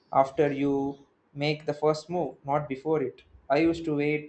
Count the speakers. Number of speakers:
1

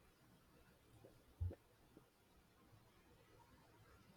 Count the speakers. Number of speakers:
0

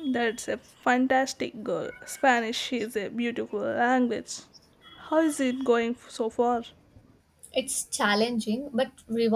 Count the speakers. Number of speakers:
2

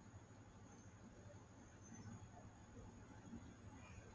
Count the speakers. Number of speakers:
0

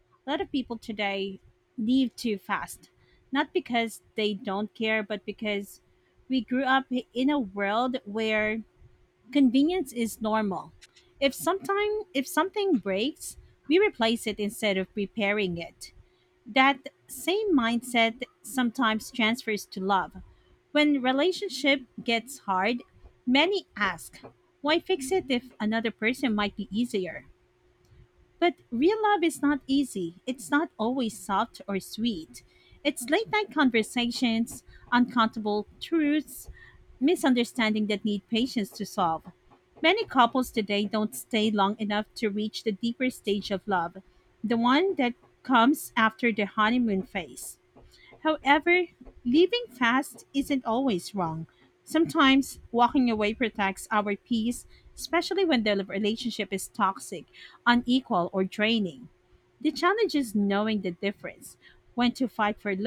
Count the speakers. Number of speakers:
1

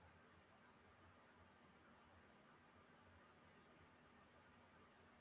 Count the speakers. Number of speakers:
0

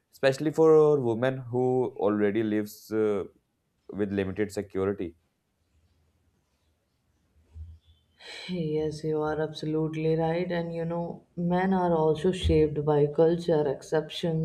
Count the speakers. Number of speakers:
2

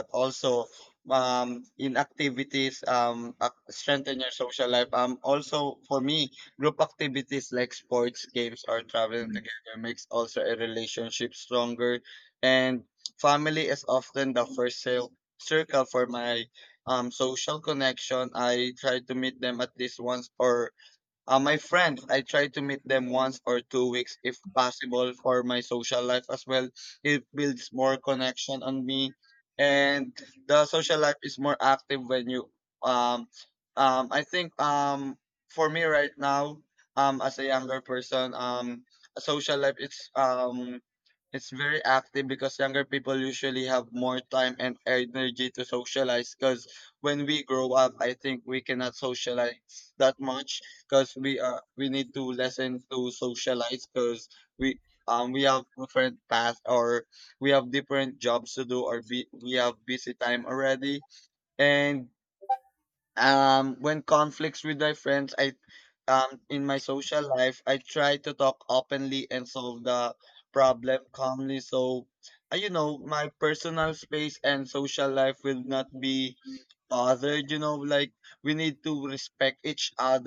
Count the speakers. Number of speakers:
1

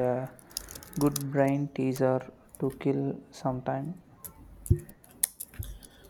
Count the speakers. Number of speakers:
1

